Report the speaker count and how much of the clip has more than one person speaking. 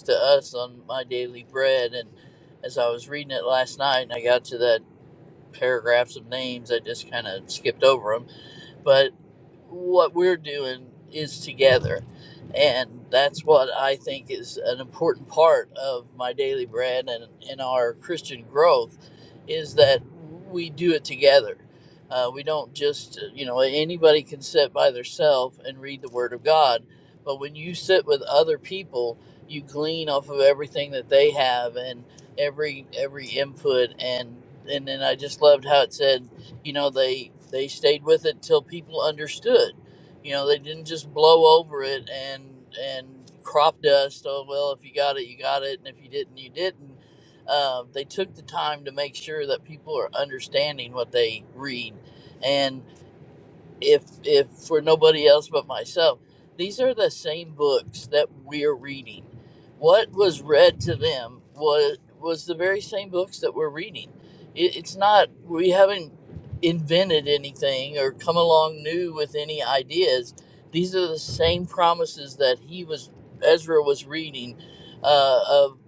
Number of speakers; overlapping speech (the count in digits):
1, no overlap